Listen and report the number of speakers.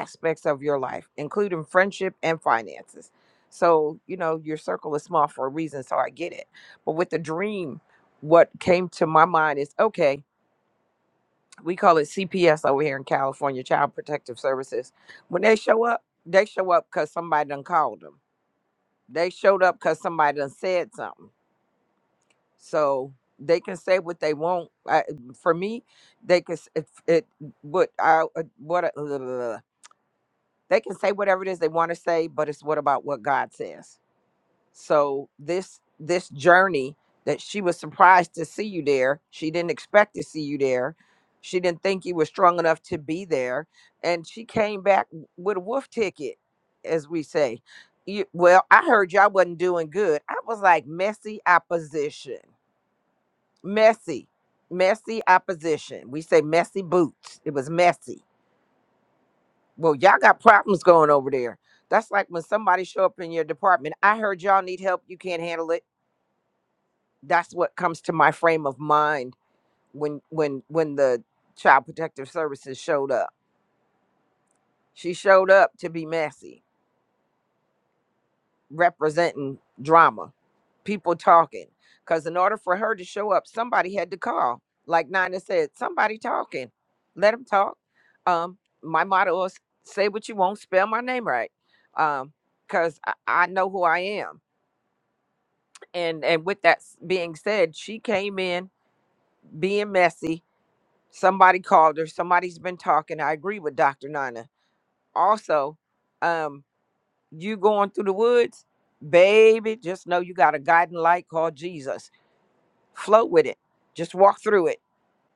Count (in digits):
1